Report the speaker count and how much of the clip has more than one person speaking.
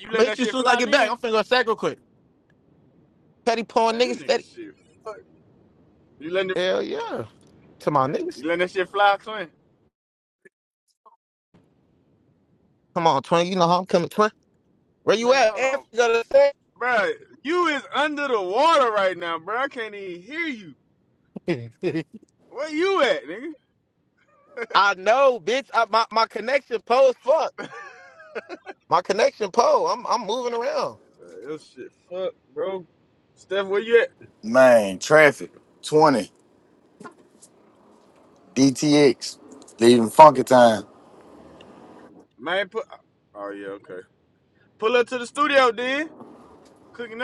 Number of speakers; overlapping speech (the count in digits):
3, about 5%